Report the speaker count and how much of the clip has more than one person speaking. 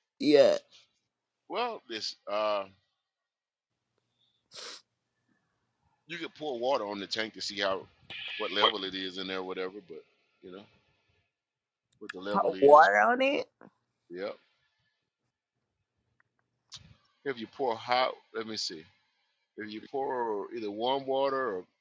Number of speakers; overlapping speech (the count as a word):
two, about 2%